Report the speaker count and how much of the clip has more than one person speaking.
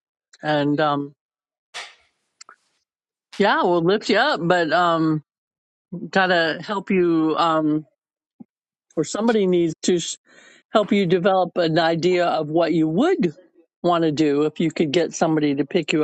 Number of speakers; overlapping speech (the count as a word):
one, no overlap